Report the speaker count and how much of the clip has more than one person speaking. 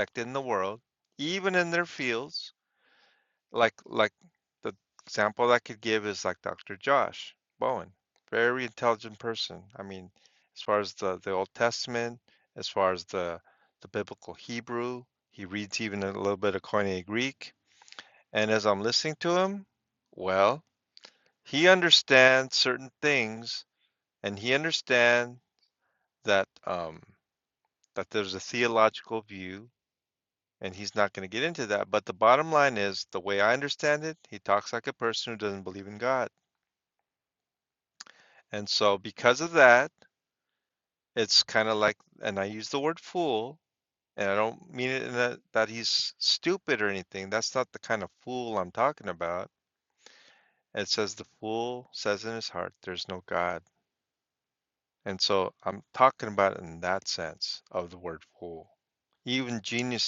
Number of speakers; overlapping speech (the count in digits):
1, no overlap